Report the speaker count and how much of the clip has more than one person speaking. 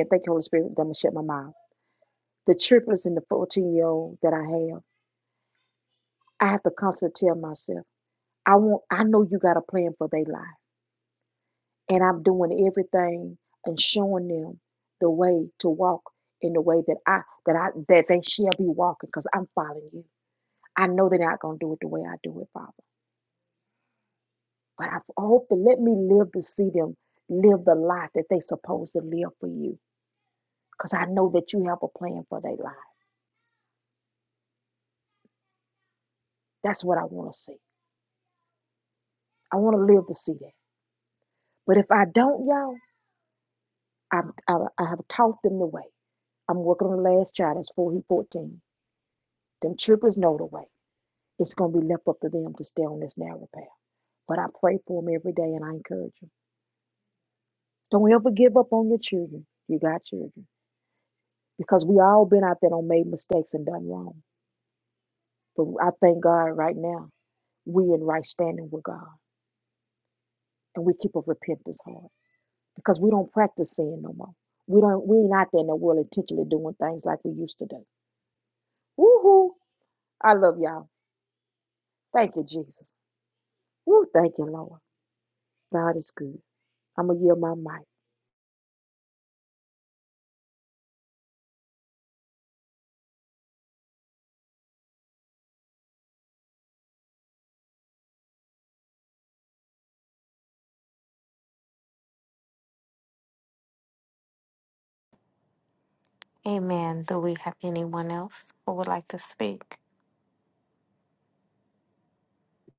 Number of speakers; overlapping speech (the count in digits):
2, no overlap